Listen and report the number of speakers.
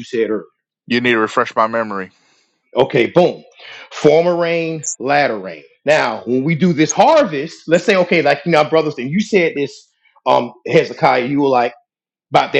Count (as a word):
two